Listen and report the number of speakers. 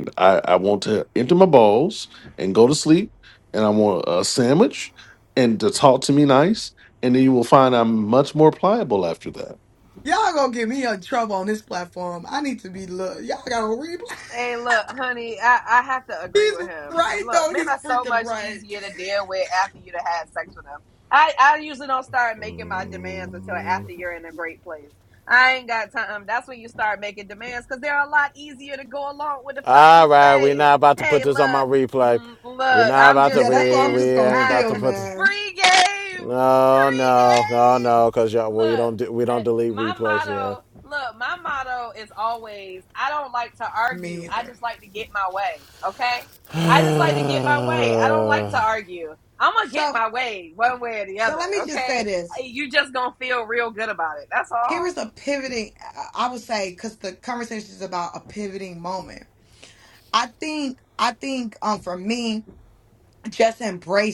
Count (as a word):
four